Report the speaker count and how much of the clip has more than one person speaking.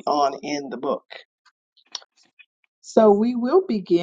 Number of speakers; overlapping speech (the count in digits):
1, no overlap